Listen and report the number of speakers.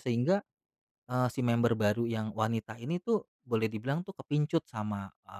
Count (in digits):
1